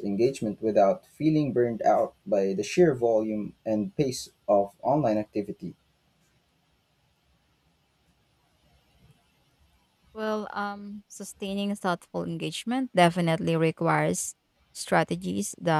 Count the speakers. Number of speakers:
two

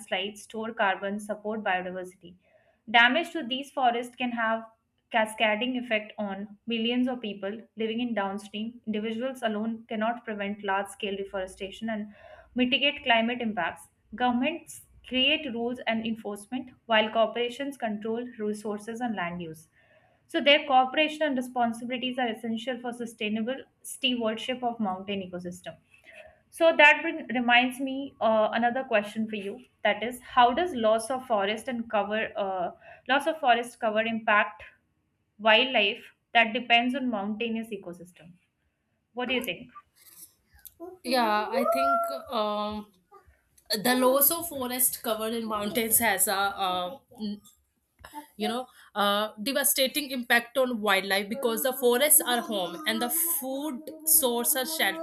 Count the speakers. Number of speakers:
two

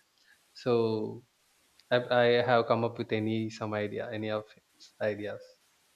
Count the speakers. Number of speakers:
one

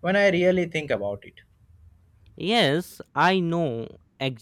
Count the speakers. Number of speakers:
two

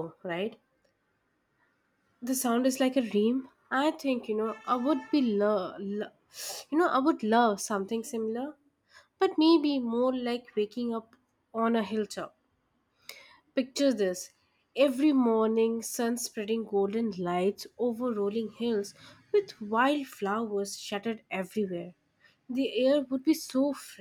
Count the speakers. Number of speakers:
one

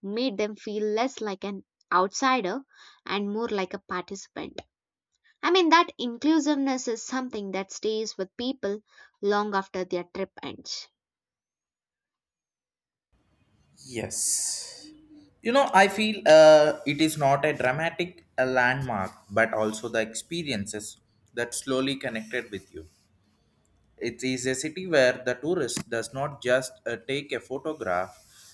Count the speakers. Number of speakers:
two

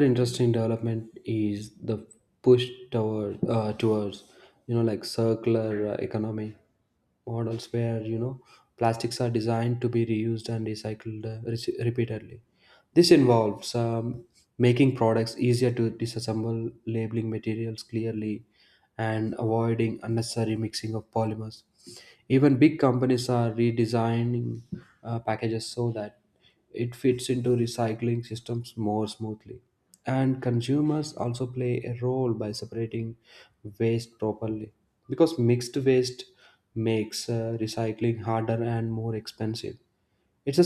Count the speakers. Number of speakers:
one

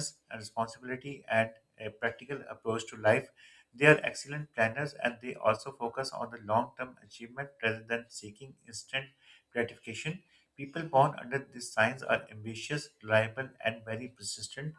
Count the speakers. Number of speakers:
one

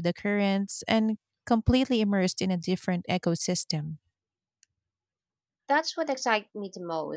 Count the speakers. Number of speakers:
two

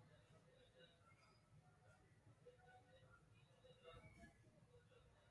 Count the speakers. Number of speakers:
zero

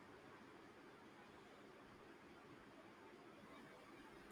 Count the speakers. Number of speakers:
zero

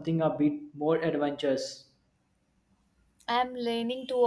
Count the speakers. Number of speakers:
two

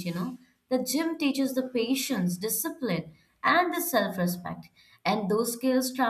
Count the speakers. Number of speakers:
one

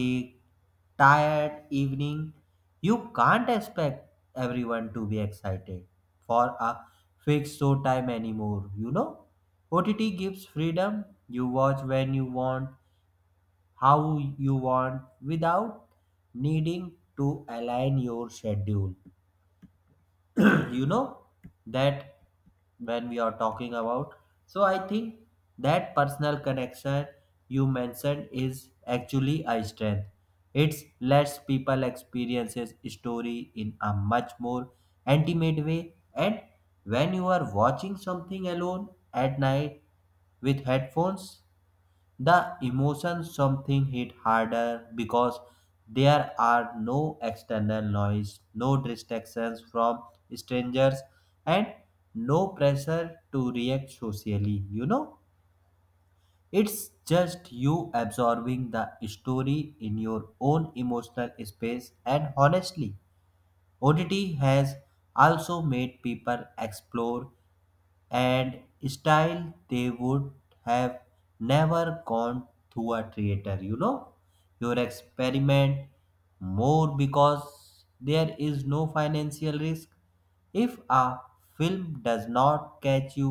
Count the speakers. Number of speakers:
one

